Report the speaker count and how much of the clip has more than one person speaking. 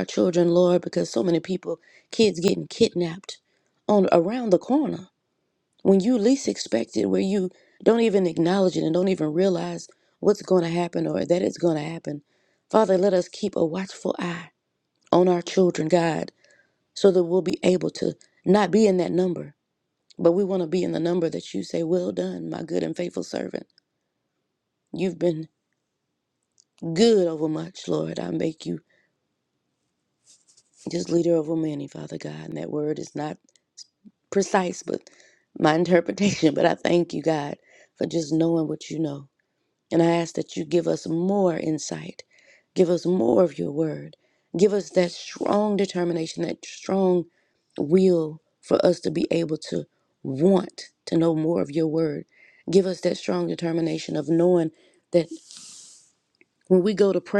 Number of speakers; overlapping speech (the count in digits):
1, no overlap